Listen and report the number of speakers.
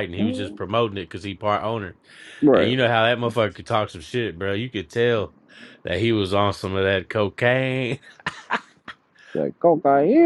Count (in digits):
2